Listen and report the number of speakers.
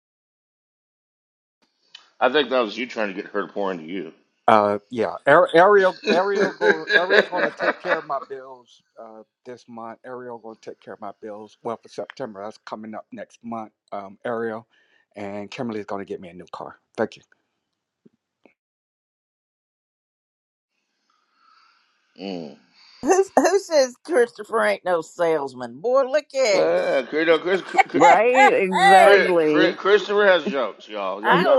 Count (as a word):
four